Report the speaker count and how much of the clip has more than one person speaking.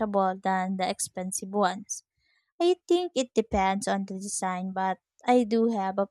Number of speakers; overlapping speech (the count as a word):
one, no overlap